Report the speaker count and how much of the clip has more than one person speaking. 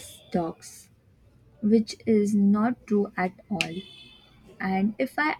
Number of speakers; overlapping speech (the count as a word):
one, no overlap